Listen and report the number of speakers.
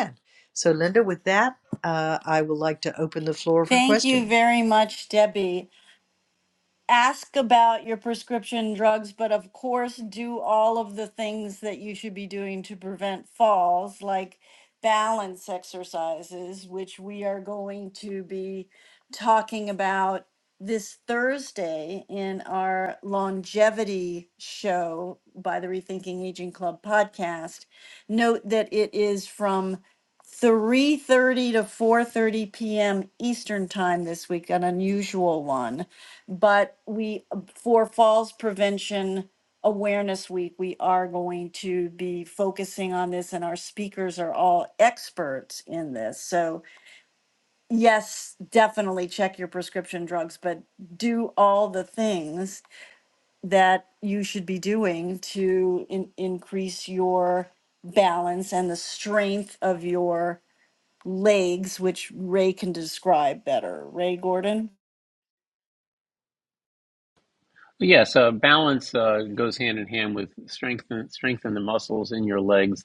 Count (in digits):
3